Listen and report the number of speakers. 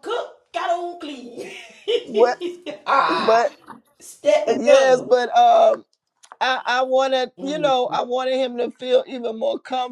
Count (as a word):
two